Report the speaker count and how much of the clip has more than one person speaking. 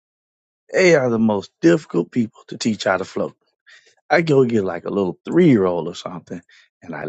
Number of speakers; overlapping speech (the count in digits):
1, no overlap